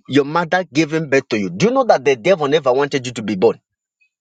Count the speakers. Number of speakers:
1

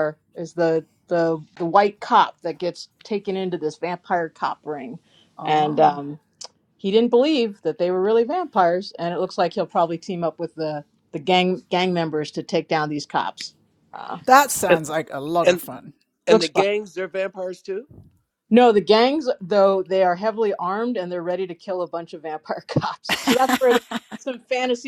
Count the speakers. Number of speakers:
3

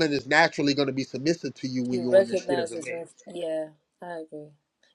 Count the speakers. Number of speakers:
2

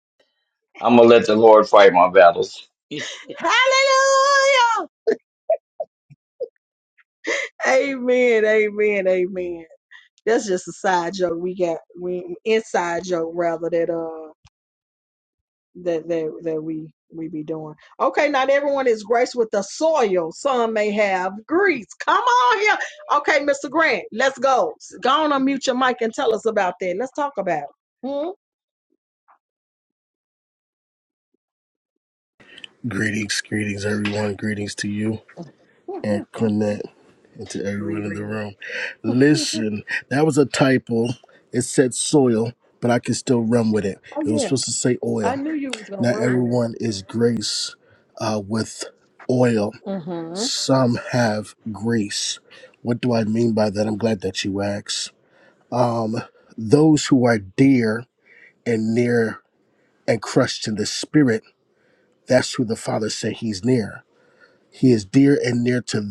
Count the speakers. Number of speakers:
3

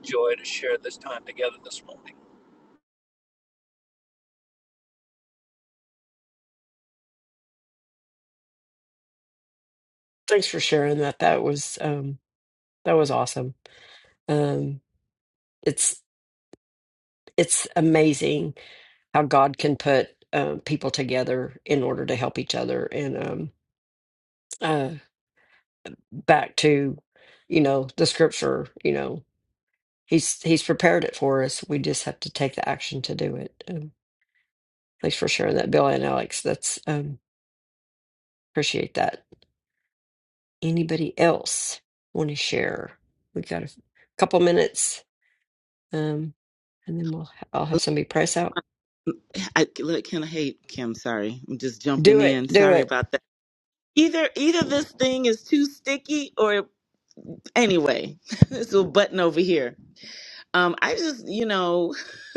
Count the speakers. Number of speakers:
3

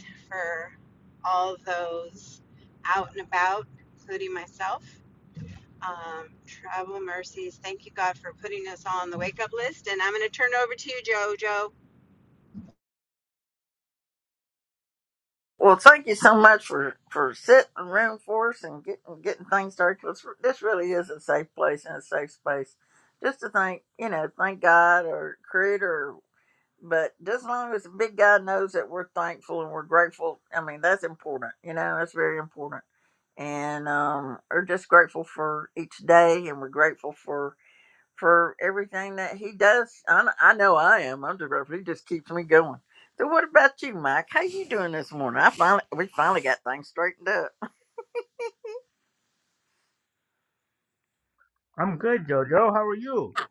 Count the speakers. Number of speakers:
3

